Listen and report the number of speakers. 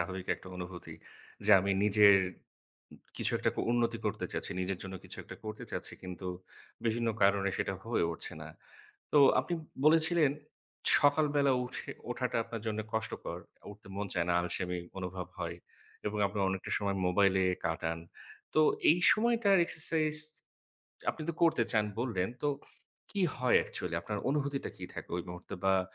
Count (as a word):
one